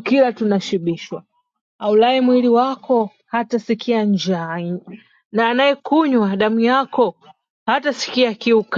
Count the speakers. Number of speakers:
one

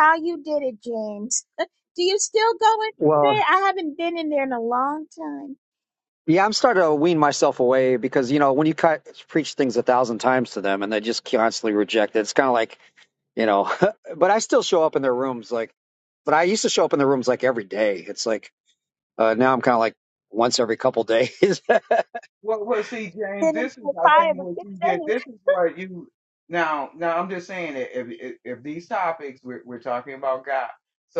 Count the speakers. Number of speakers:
three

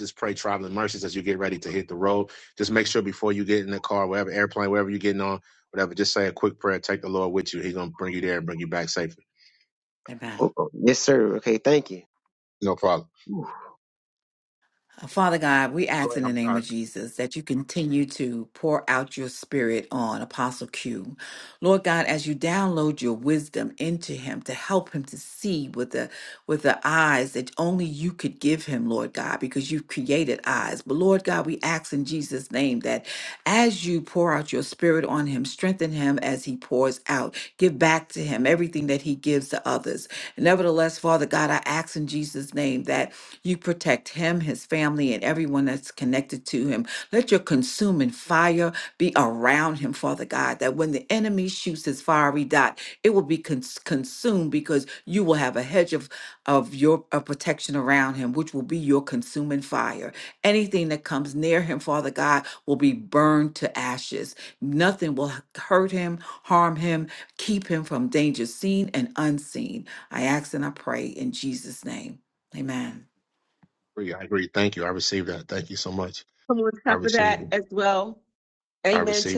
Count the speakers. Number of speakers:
four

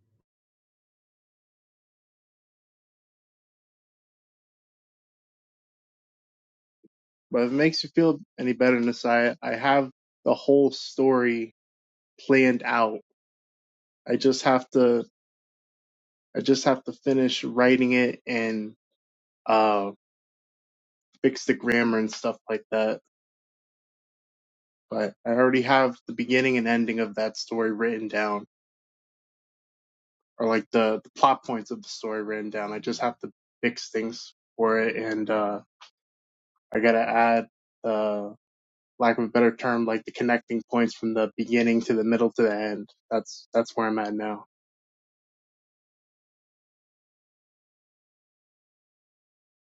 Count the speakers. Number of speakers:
one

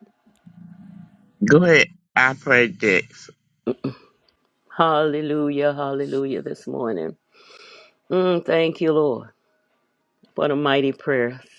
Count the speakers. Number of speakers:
two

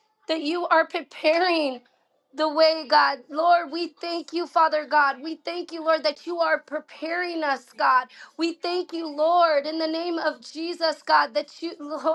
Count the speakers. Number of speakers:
one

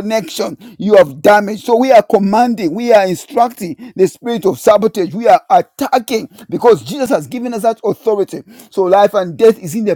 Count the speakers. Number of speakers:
one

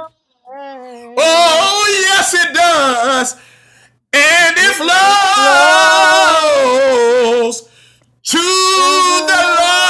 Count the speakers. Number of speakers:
two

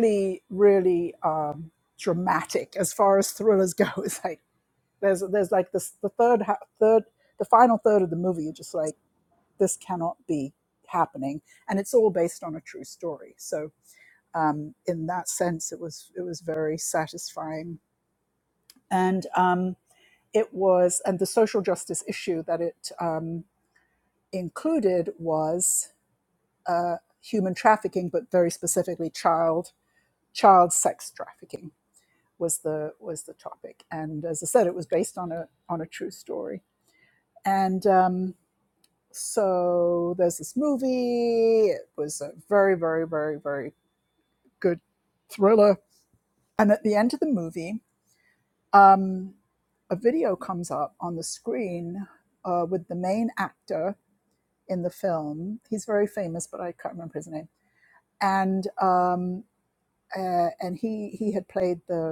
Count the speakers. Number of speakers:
one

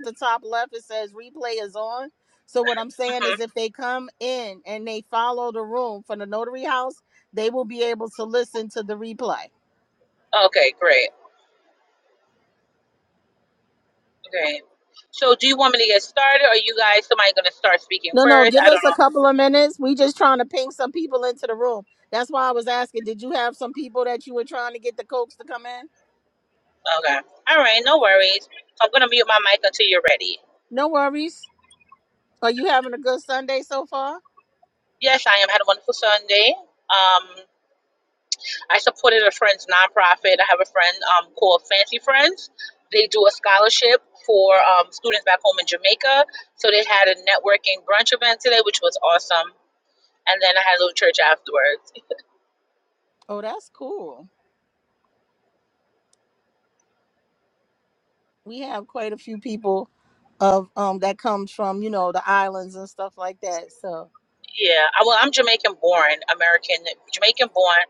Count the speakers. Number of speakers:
two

